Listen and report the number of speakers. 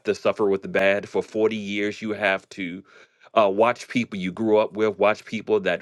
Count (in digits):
1